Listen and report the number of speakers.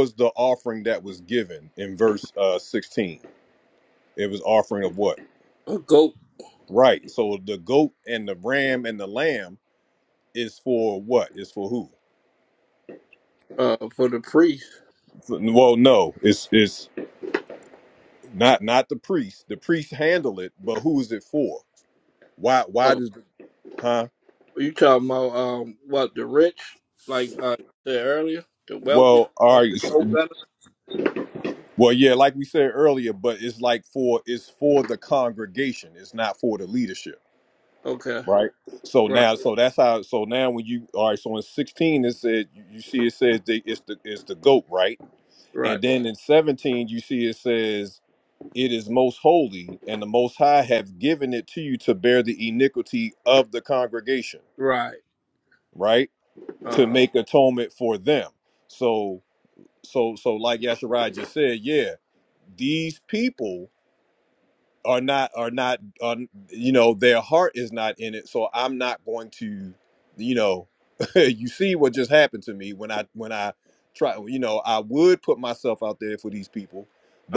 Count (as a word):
two